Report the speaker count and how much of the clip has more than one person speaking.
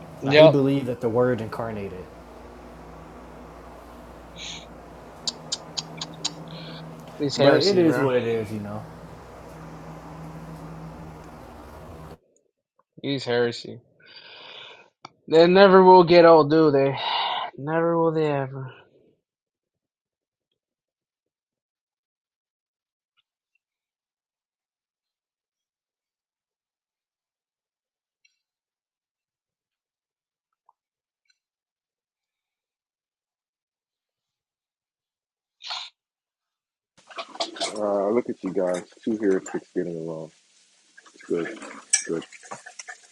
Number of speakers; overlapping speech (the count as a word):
three, about 3%